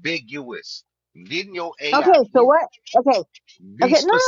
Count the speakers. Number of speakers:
two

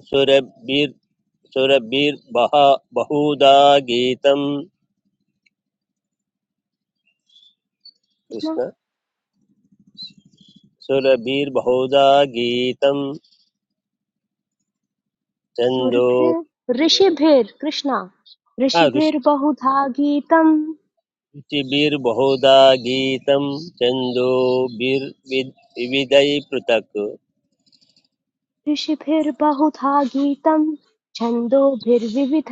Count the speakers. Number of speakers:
two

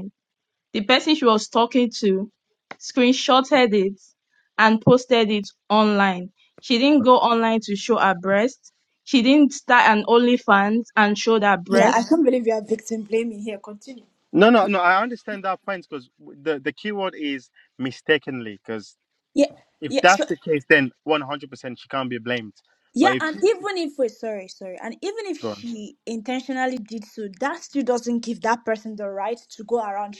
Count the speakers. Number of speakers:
three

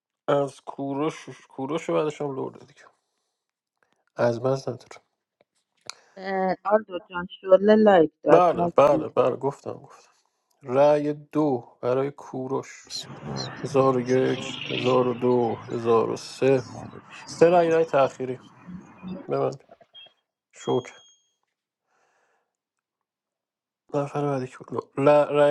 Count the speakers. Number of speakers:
three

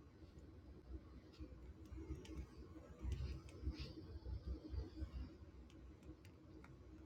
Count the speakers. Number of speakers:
zero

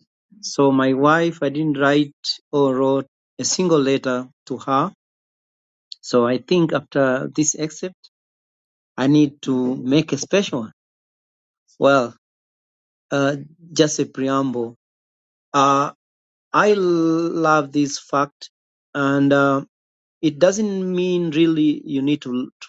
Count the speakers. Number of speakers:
one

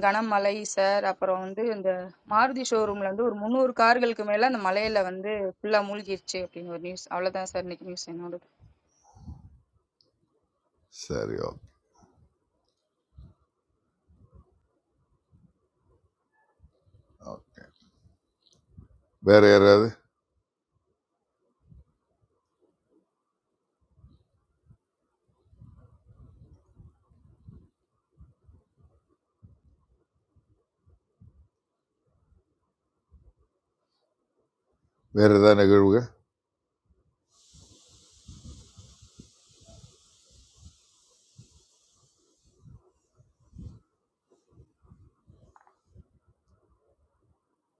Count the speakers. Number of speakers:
two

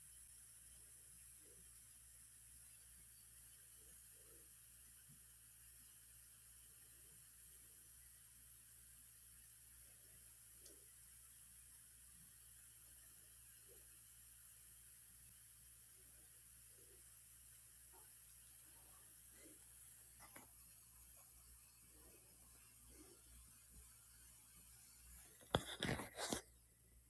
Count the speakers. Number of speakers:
zero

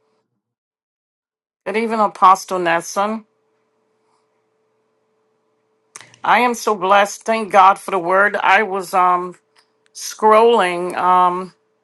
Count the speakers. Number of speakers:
one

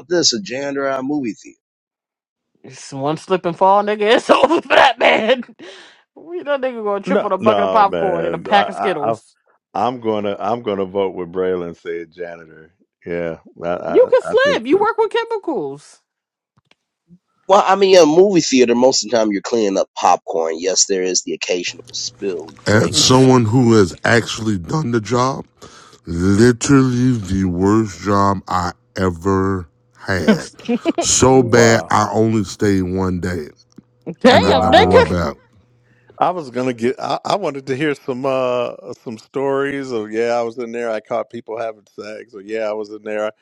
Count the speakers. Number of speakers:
four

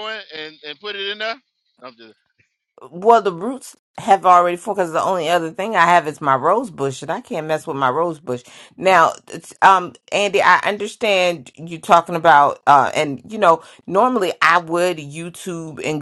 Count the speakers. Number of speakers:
two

